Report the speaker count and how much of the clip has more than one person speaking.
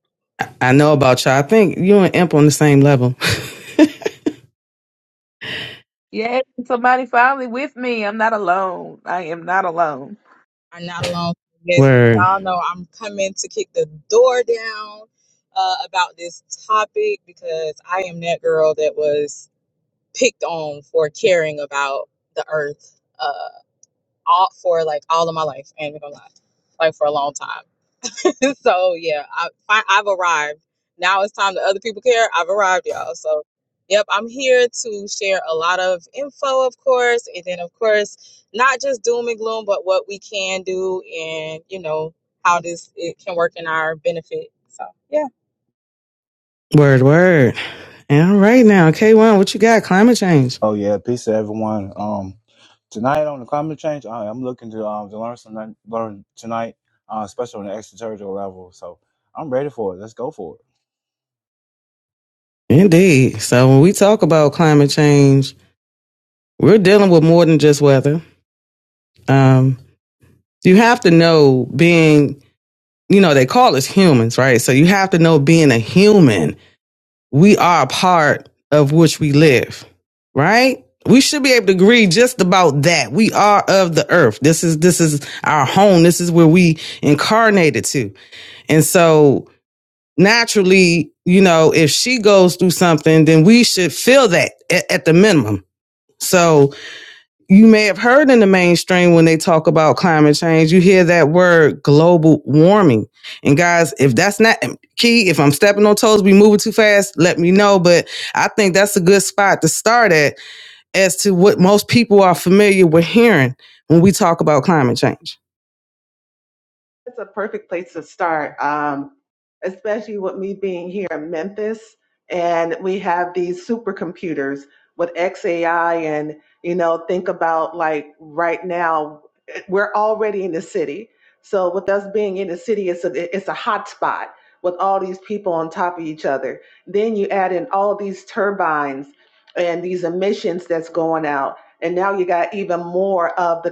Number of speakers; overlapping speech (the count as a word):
five, under 1%